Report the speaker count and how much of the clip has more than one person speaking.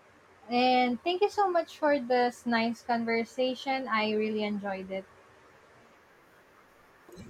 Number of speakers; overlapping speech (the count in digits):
1, no overlap